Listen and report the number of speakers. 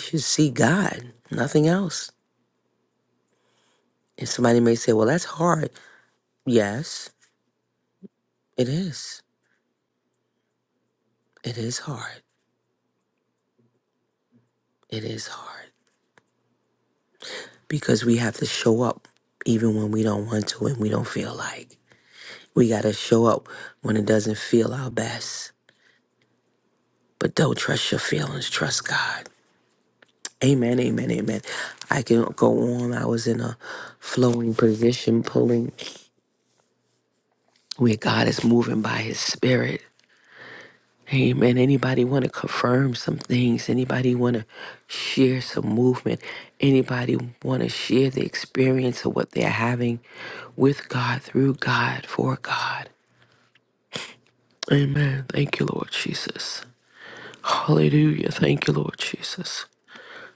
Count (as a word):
one